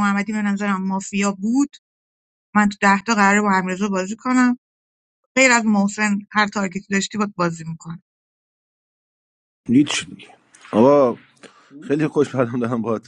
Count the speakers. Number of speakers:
two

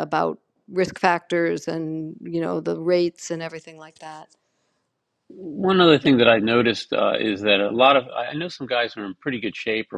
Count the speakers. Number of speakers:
two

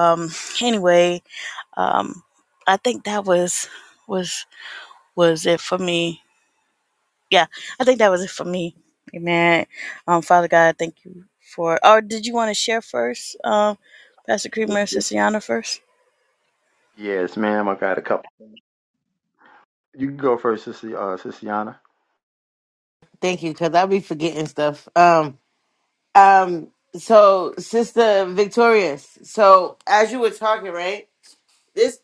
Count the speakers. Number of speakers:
three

